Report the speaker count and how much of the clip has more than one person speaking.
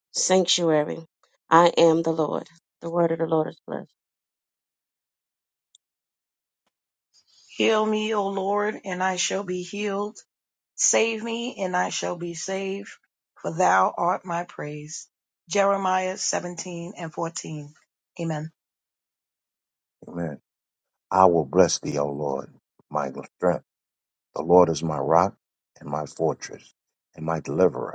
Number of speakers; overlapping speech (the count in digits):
3, no overlap